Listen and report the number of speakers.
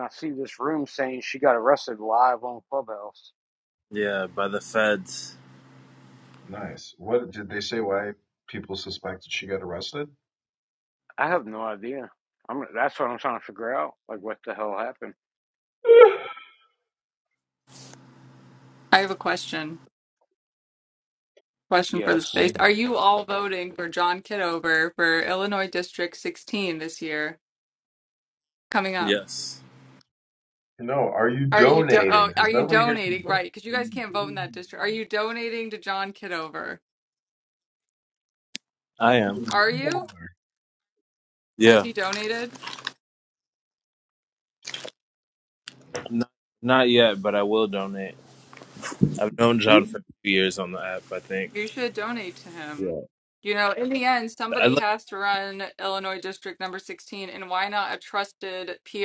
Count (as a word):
four